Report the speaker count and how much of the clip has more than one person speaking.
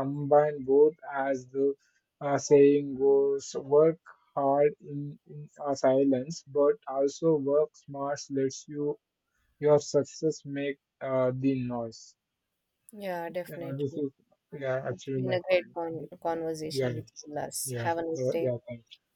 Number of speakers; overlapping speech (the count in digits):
2, about 12%